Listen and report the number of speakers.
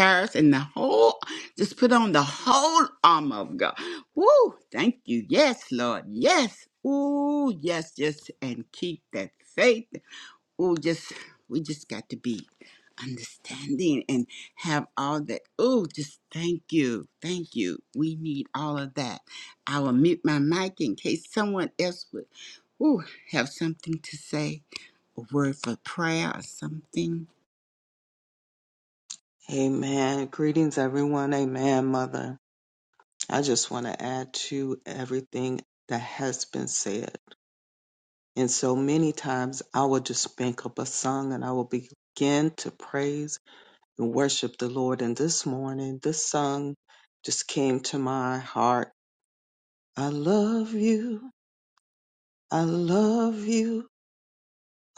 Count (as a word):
two